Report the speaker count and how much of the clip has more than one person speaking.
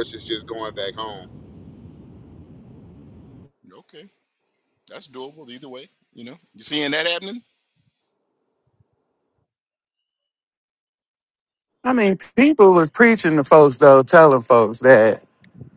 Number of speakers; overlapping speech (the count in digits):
3, no overlap